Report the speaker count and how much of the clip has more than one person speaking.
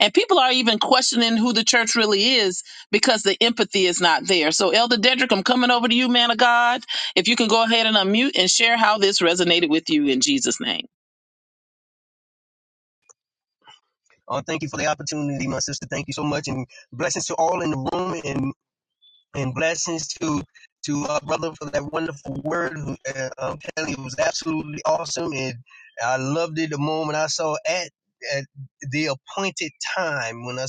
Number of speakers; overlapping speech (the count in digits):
2, no overlap